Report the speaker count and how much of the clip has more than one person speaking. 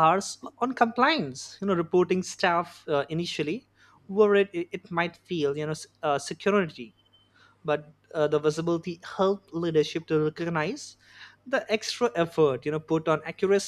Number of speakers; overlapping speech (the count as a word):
one, no overlap